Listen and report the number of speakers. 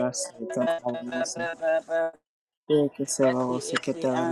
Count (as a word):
two